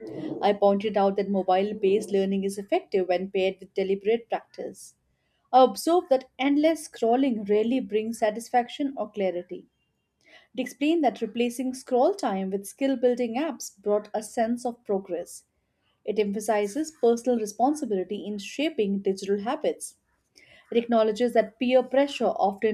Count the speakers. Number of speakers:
one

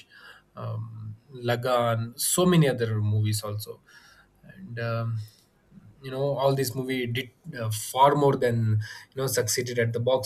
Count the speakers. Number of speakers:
one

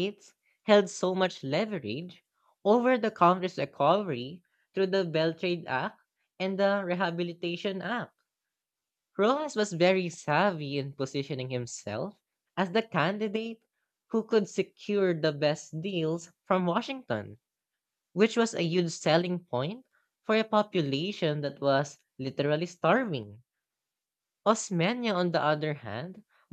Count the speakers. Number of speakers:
one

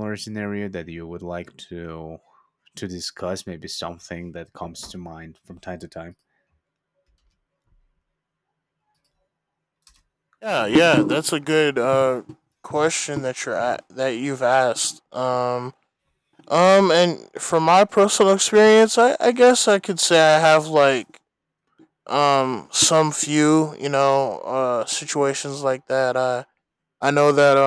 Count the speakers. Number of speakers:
two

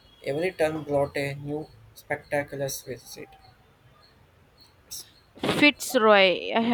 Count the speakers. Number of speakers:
two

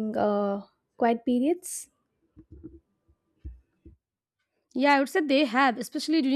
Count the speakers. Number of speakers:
two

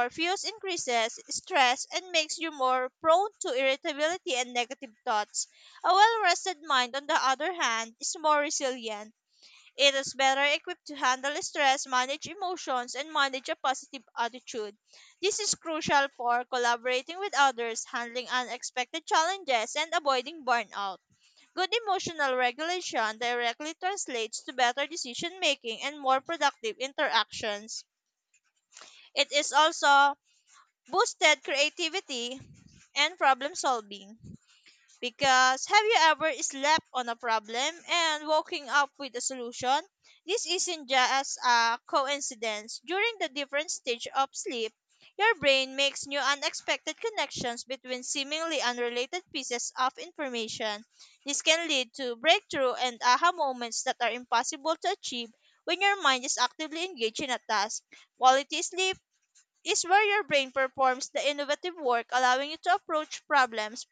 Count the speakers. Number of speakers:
one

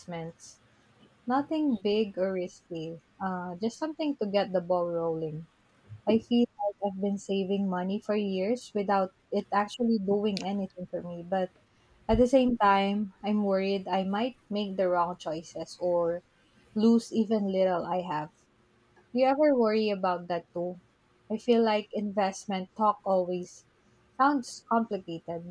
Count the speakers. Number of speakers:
one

